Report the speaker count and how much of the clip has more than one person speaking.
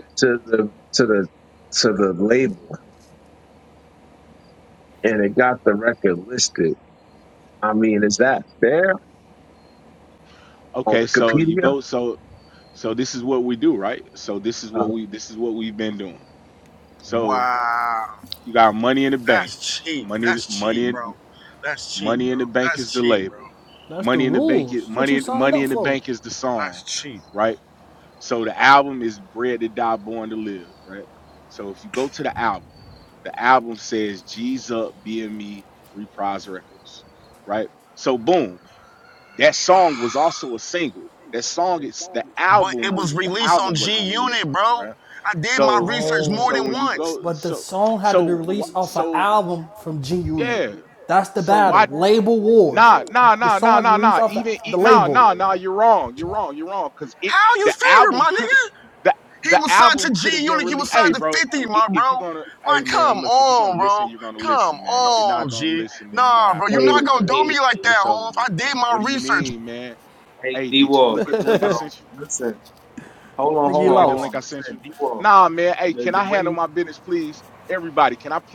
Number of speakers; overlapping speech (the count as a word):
five, about 34%